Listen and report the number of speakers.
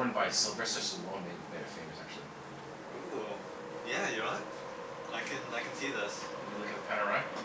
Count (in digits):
2